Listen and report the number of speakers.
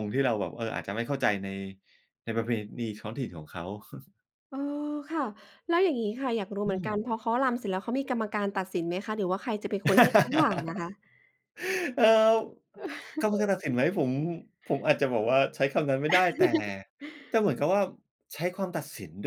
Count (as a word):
two